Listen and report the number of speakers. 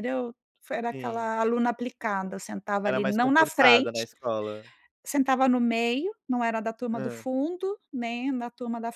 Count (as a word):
two